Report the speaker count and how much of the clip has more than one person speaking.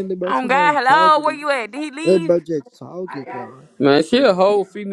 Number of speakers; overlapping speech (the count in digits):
3, about 28%